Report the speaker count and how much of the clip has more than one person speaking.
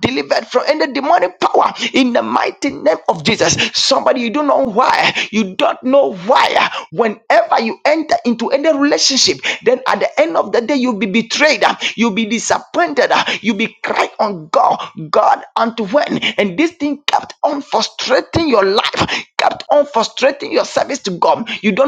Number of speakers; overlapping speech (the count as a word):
one, no overlap